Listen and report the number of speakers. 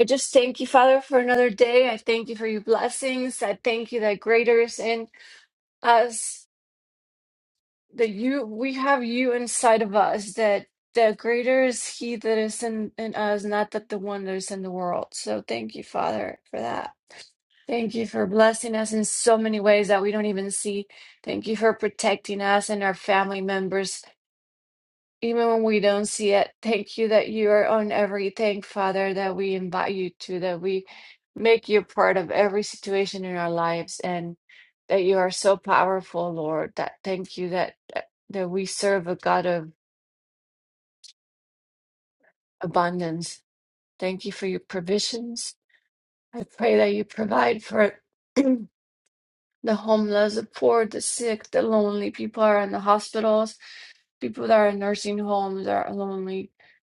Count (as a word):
one